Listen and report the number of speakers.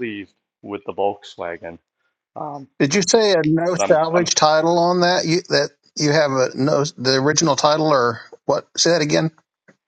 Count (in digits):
2